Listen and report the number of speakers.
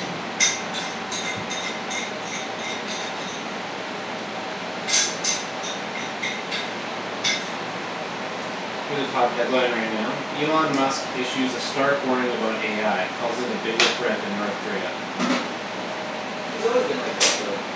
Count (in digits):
2